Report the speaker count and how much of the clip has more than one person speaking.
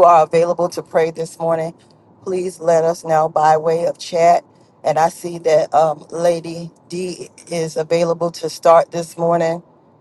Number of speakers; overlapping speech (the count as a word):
one, no overlap